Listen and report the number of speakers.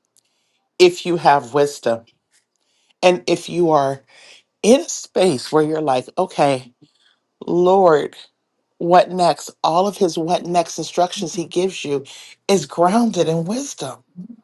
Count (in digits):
1